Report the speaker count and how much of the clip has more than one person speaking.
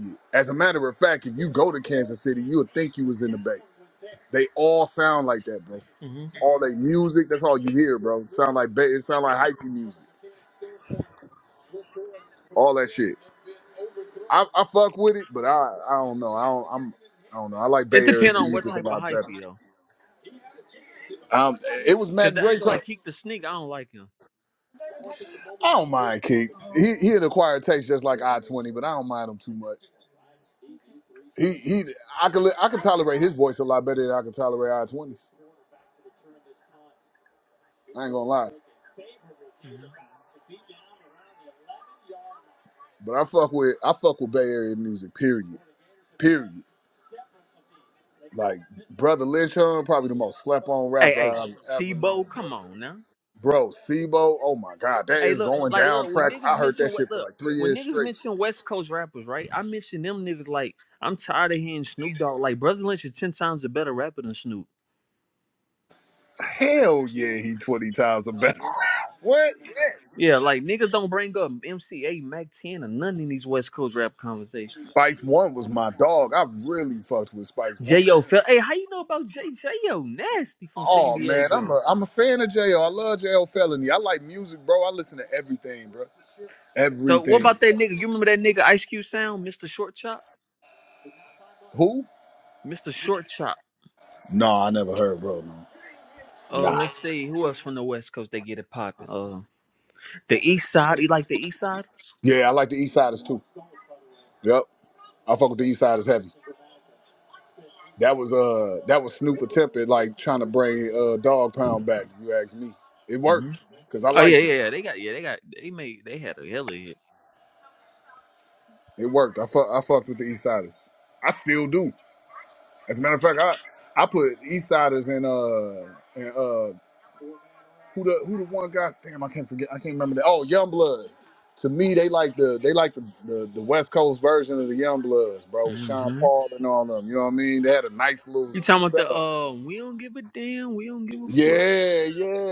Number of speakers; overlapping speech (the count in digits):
2, about 7%